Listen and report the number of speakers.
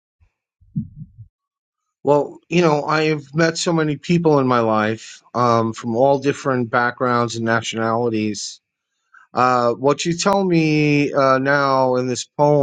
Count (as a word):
one